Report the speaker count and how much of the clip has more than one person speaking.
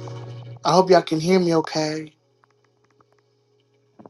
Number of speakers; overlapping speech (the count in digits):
1, no overlap